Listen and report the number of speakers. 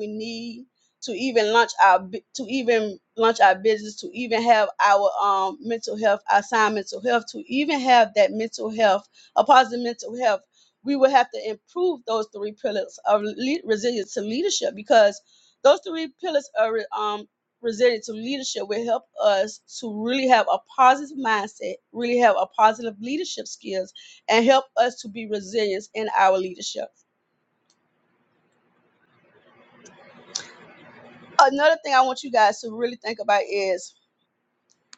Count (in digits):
1